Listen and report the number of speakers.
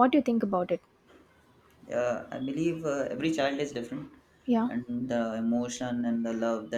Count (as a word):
two